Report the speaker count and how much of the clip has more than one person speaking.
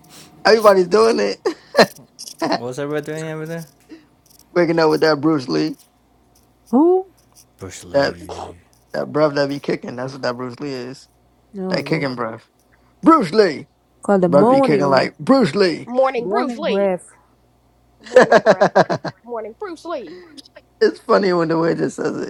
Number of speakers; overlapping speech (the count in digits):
4, about 12%